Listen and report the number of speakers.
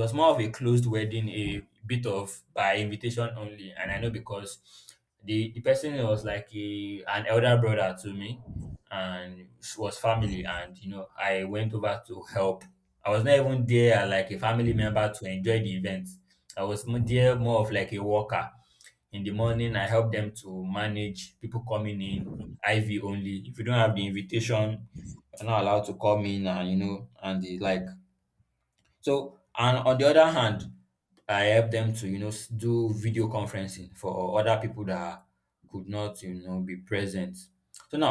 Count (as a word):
one